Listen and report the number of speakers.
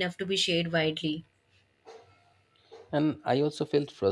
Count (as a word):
two